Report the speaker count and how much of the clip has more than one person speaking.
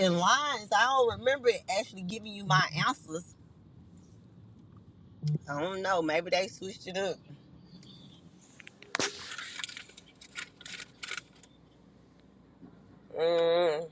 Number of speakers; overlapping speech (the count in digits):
1, no overlap